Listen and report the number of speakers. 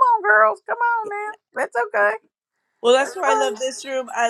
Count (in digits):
2